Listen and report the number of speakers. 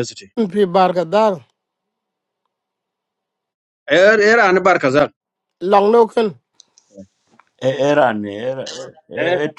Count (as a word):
three